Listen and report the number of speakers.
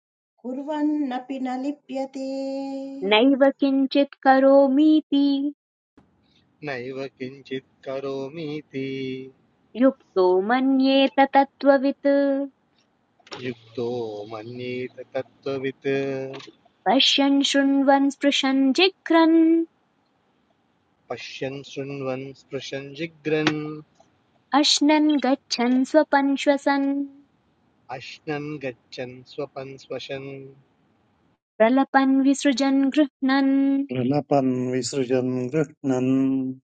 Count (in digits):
4